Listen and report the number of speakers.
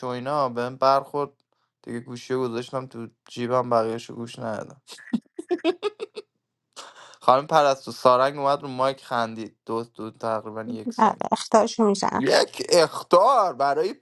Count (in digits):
2